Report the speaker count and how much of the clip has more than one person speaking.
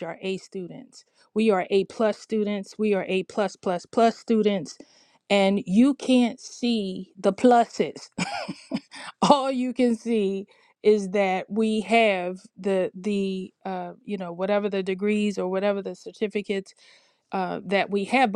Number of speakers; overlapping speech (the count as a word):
one, no overlap